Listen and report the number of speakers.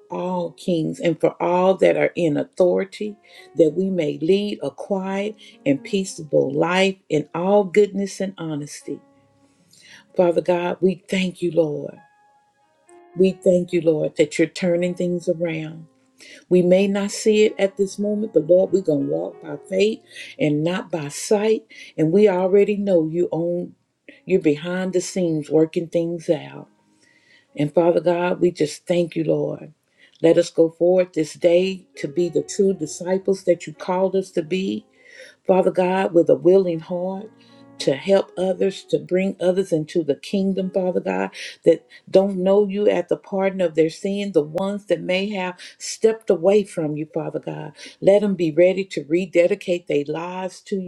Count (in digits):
1